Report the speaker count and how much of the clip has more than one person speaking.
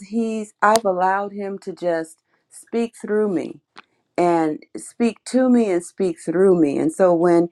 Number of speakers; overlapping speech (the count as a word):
one, no overlap